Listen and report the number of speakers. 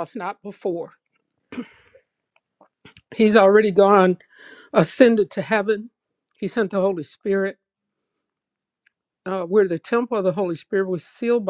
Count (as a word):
one